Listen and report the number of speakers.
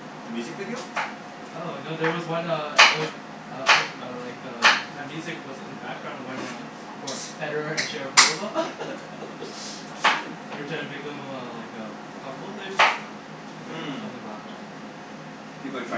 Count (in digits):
2